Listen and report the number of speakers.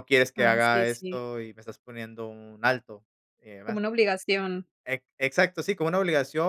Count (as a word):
two